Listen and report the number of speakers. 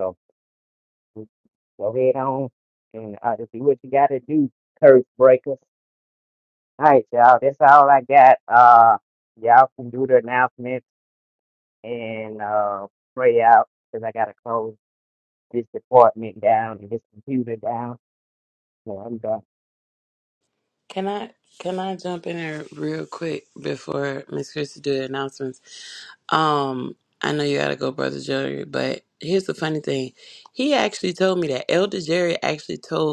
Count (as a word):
two